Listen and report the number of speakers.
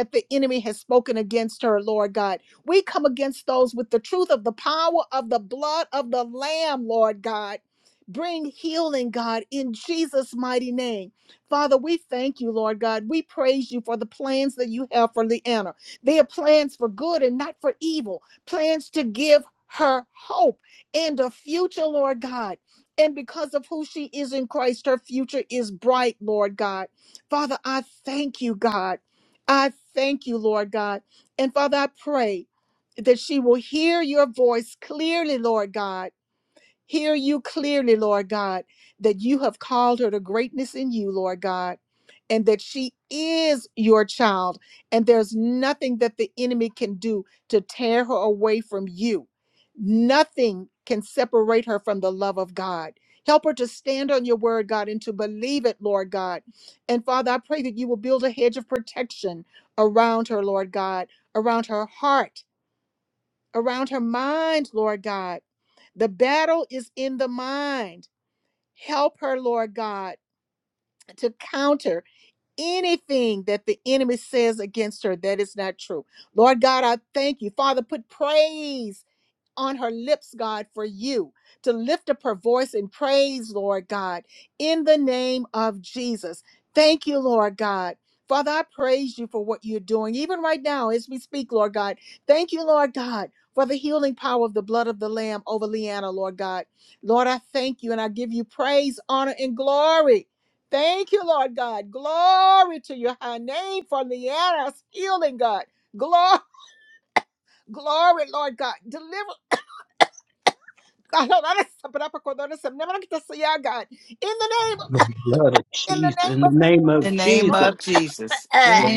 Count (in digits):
3